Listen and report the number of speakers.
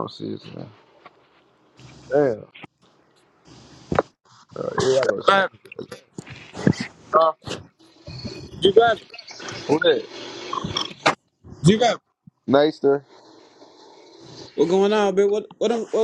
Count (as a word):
two